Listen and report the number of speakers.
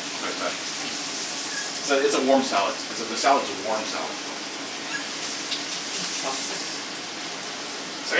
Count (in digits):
1